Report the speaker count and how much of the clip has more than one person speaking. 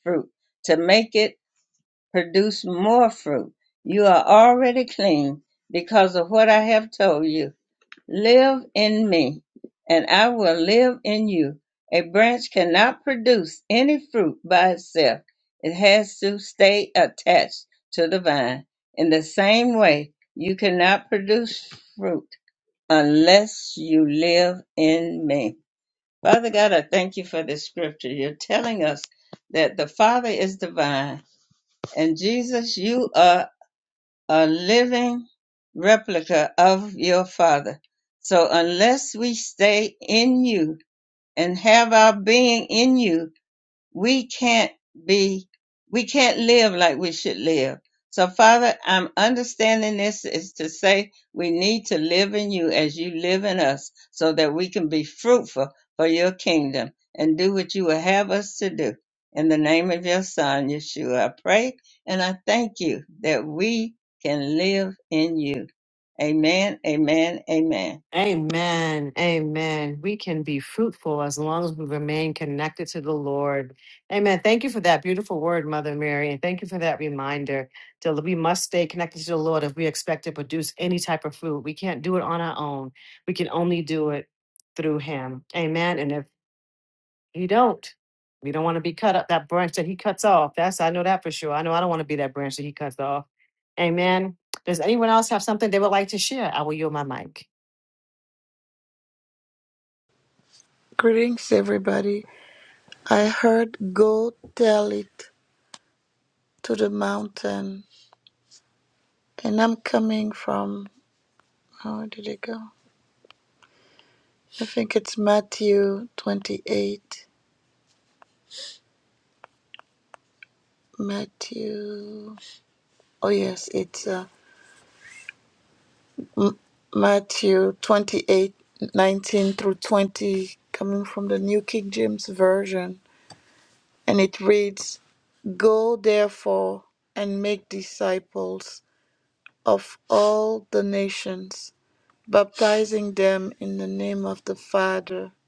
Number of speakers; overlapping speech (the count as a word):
three, no overlap